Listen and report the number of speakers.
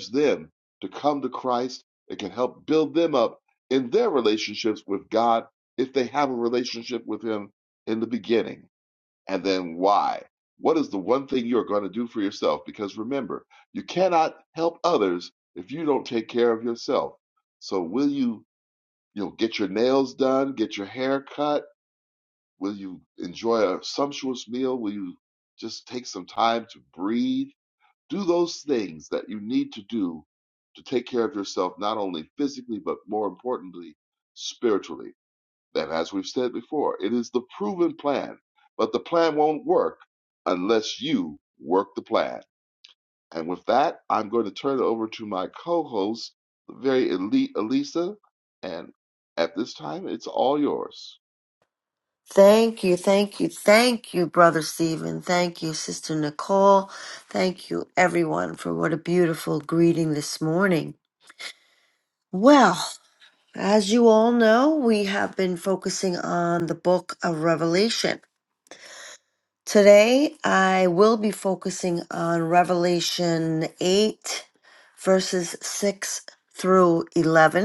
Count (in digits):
2